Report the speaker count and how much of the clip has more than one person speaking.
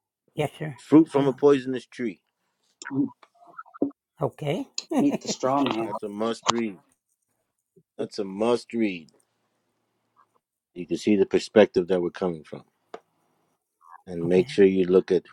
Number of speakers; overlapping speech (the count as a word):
three, about 3%